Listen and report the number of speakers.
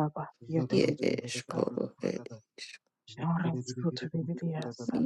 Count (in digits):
2